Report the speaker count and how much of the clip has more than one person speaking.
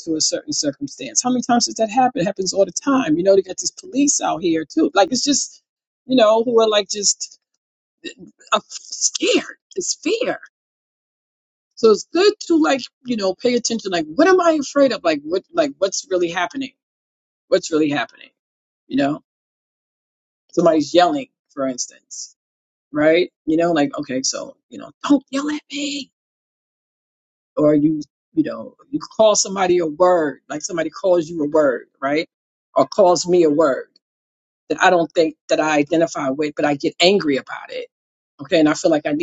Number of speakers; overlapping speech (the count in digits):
1, no overlap